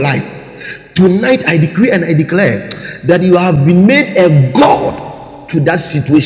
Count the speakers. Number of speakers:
one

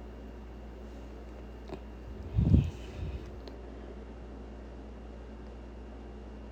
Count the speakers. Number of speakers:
zero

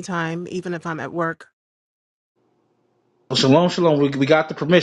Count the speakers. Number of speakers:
two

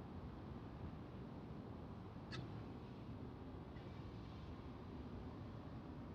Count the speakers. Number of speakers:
zero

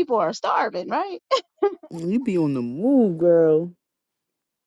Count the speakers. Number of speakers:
two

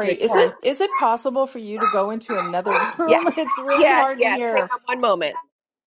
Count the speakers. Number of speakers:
two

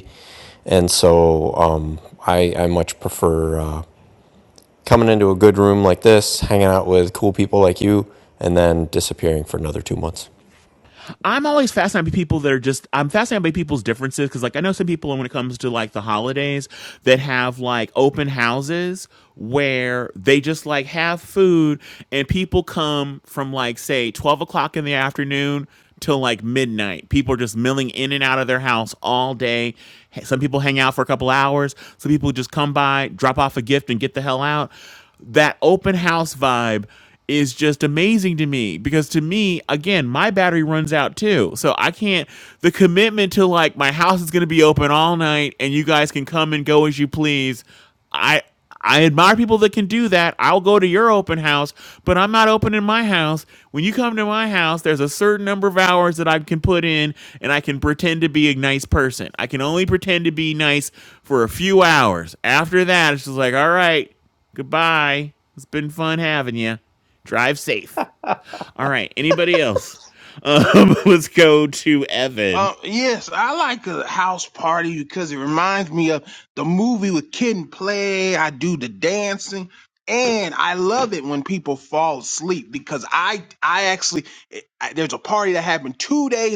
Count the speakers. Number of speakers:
three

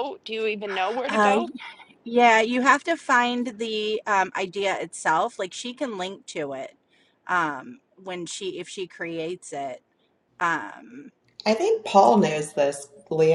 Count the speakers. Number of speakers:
three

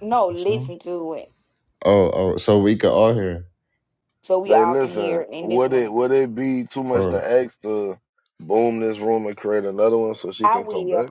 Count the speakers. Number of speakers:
three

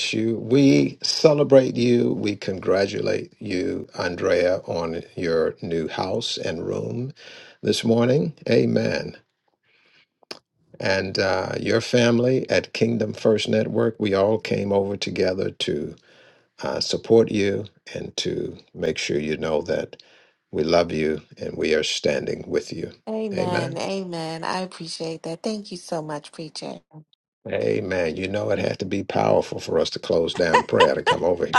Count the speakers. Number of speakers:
two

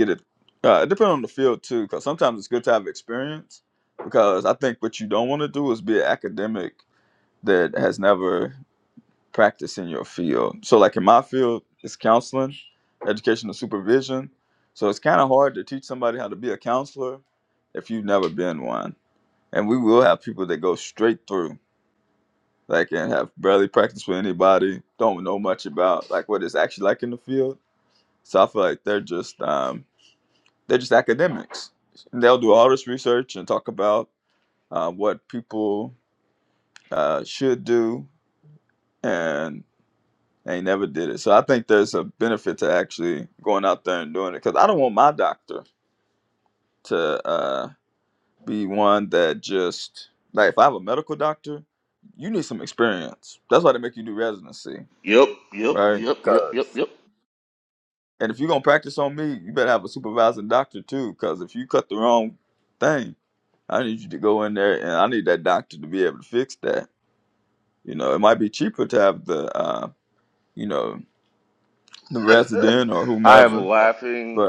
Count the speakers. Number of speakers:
two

